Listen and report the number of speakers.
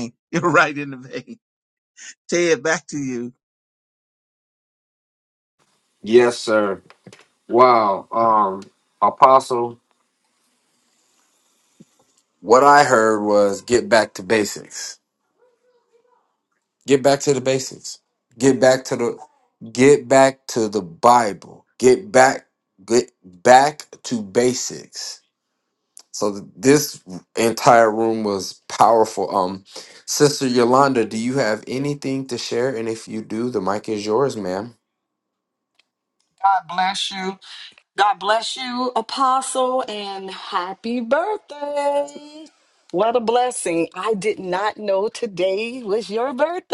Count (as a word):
three